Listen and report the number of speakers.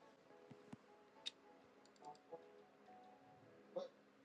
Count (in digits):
0